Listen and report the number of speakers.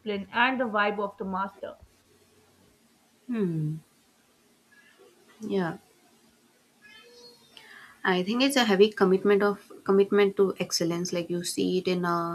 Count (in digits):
2